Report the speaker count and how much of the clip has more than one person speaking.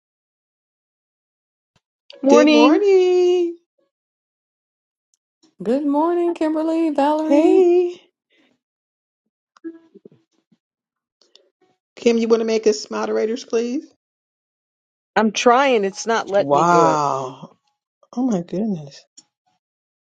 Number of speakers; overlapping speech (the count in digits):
3, about 7%